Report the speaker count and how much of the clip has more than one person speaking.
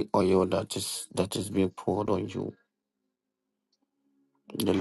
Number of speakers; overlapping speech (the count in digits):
1, no overlap